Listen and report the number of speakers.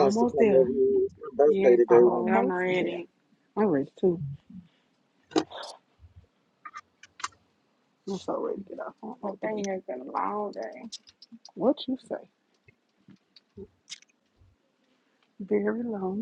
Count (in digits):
3